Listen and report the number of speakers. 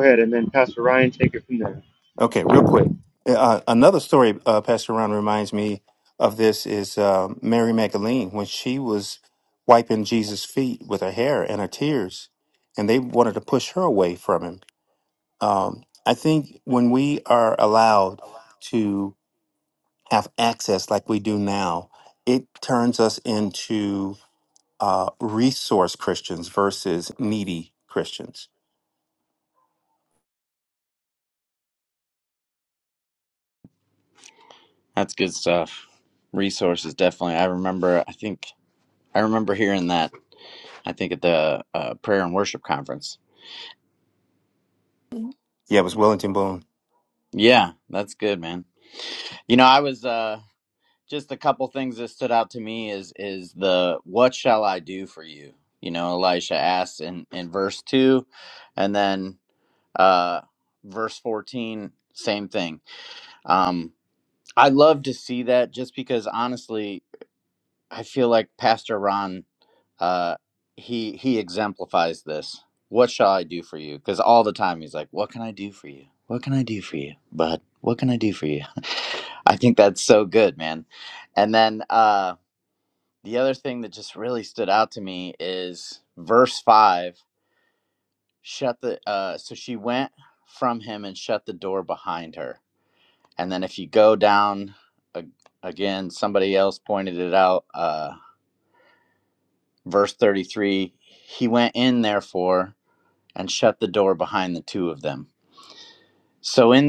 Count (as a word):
three